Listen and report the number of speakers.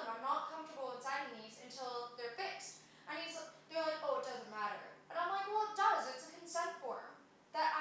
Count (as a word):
one